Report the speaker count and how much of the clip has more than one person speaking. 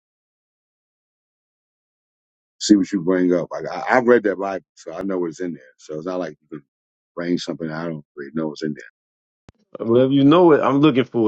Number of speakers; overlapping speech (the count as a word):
two, no overlap